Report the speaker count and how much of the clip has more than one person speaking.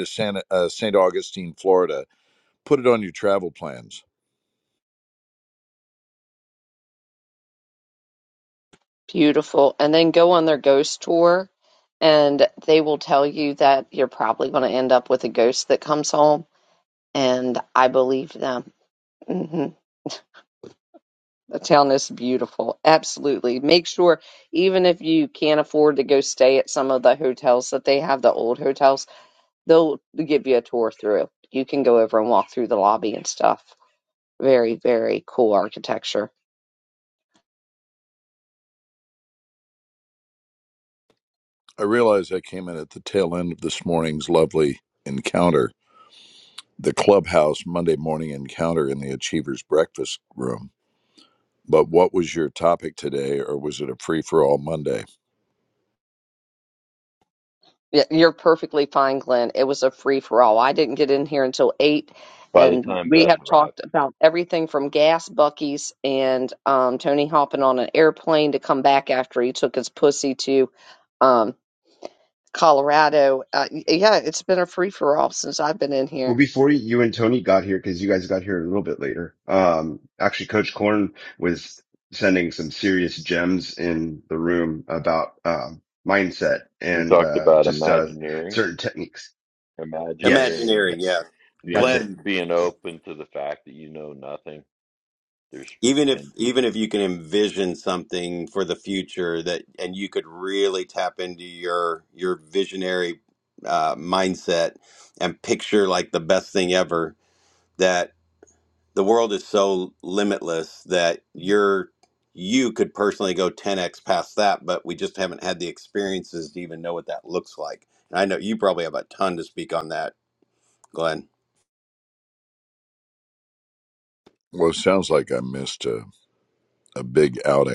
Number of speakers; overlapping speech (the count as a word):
five, about 3%